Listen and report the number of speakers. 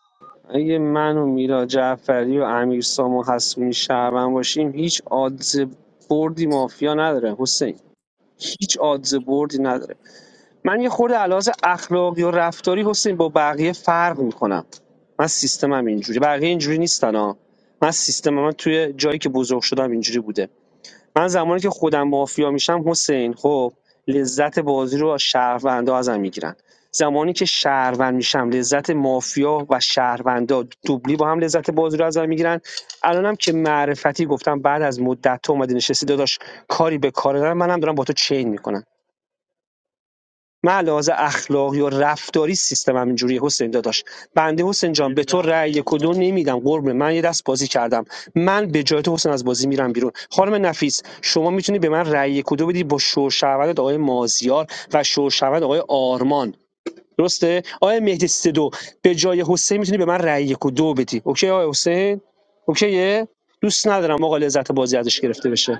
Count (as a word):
one